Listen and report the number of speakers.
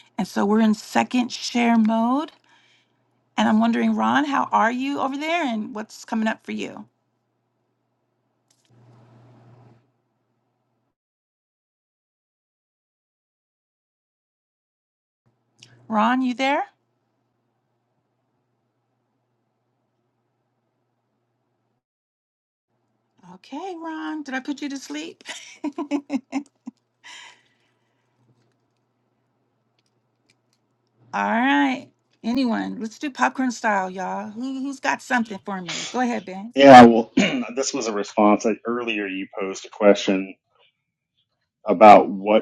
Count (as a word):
two